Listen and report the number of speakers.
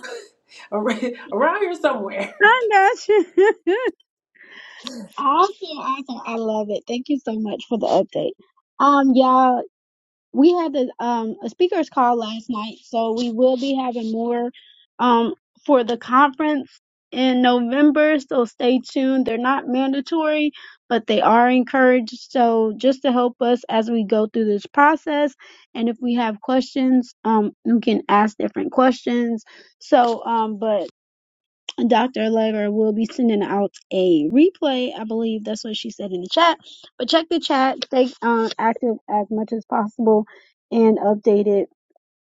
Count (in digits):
2